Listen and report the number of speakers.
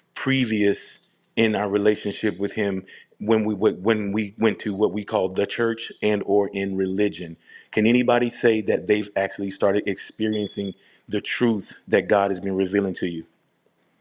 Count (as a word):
one